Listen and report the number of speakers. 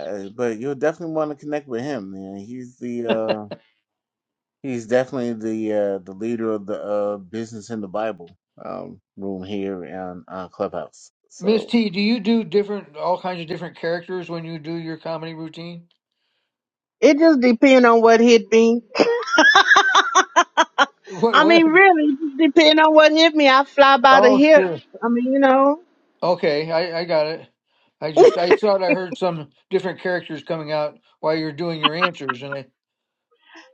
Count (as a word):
three